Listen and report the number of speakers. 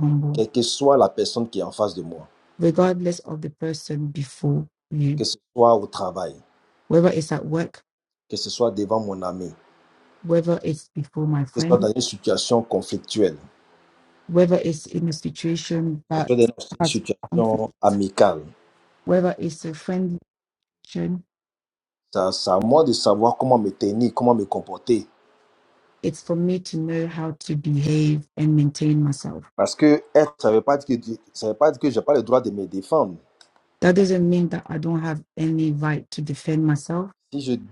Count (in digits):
2